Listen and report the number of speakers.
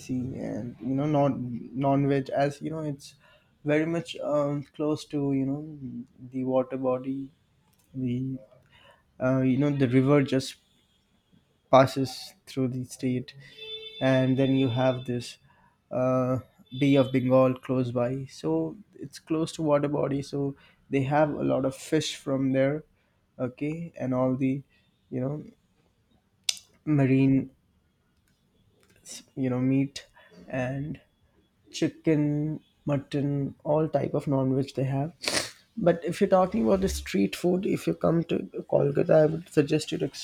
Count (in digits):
1